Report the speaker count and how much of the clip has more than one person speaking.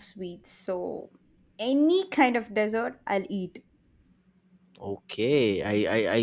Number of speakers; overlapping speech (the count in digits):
2, no overlap